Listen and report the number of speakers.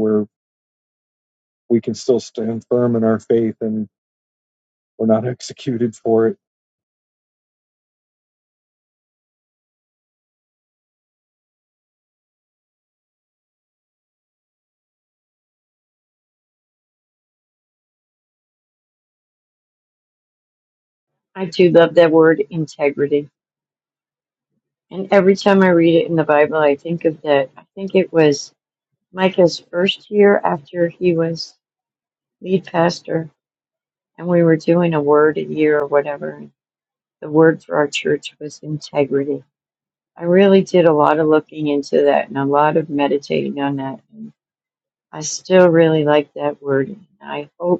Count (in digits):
2